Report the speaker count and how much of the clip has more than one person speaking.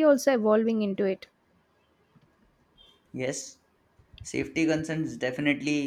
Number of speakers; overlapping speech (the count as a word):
two, no overlap